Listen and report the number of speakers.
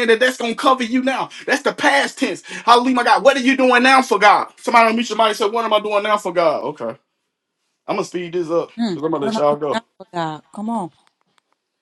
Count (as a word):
two